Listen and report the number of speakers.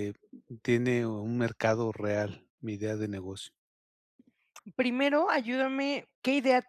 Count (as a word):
two